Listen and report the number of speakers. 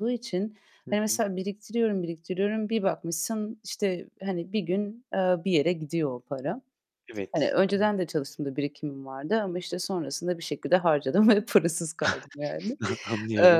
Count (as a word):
two